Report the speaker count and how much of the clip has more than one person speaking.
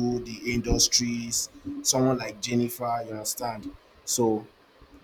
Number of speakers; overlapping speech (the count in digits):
1, no overlap